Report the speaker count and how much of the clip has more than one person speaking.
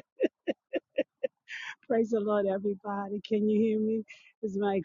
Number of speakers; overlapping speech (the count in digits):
1, no overlap